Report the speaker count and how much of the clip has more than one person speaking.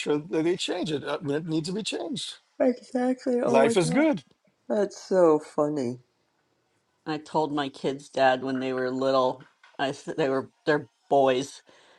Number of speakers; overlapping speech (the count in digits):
3, about 6%